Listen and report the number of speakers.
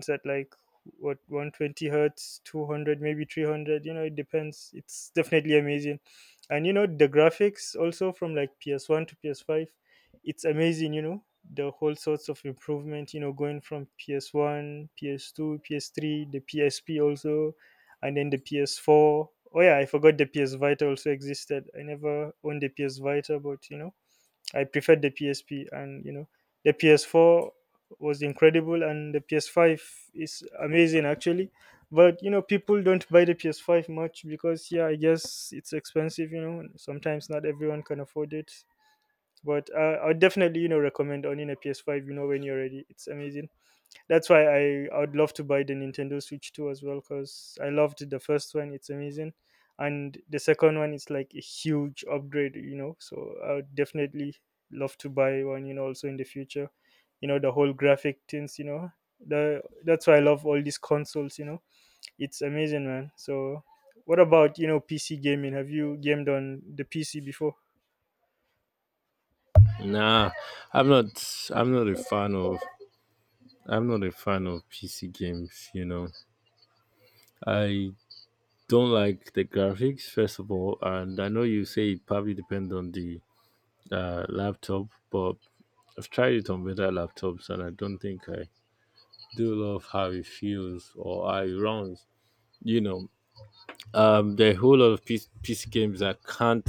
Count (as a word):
two